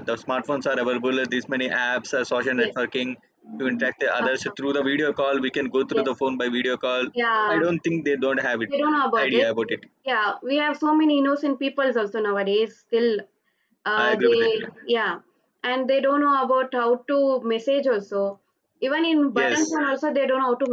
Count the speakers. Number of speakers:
2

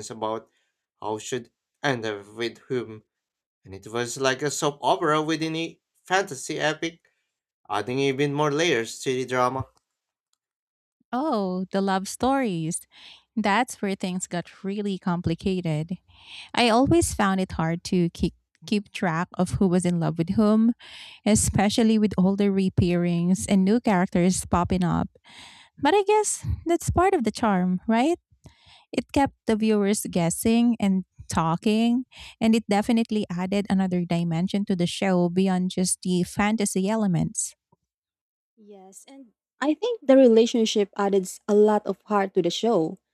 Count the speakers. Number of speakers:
3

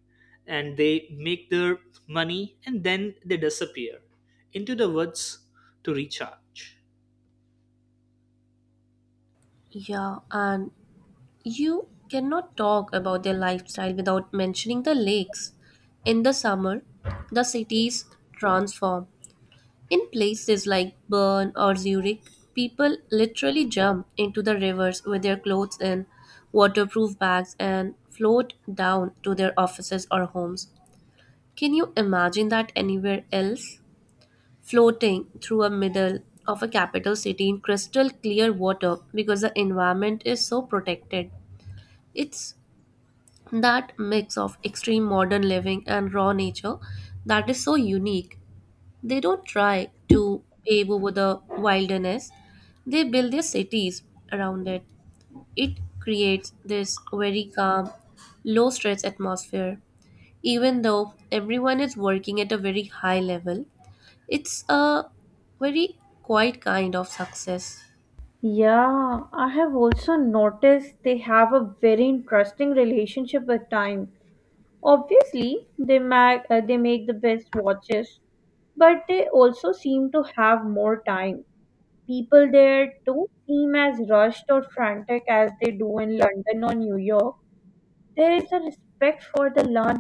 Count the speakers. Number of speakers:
3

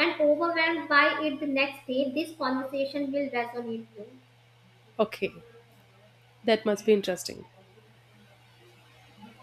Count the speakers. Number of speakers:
2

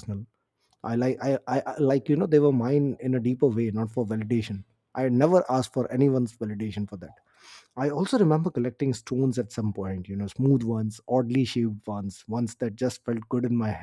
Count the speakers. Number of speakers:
1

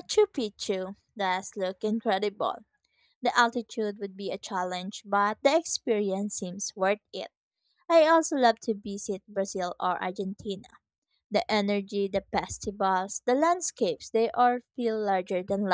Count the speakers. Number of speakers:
1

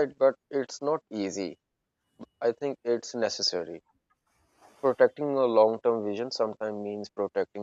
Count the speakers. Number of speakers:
1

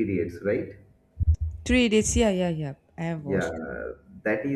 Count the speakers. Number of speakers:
2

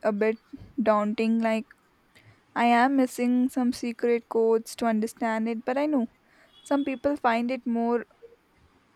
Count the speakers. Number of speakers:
1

